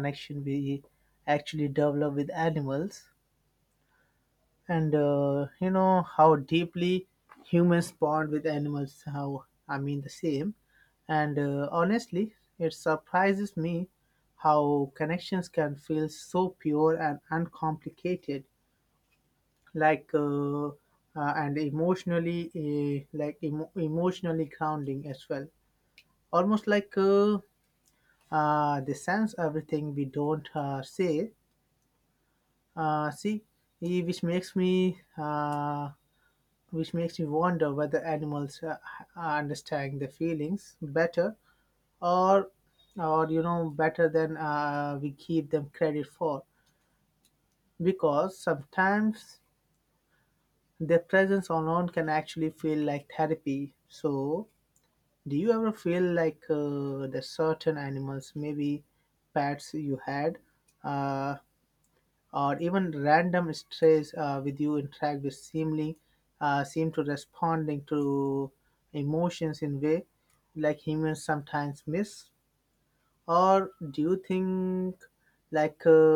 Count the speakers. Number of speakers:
1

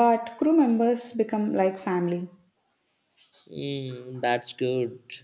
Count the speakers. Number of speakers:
2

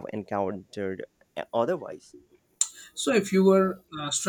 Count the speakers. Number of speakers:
2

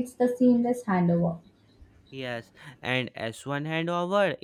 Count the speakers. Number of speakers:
2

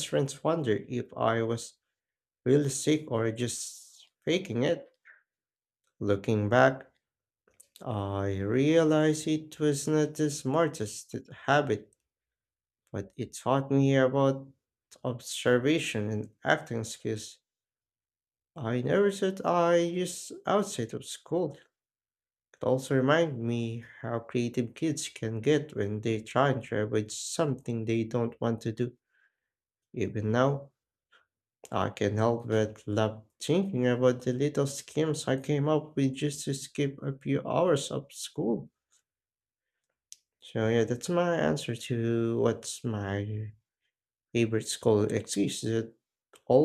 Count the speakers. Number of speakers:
1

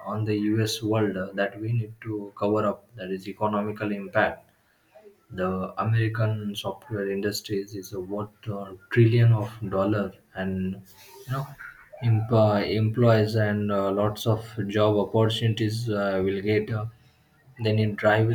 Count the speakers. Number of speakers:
1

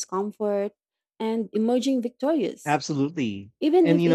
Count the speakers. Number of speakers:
2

